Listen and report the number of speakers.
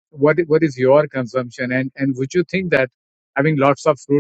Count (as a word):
one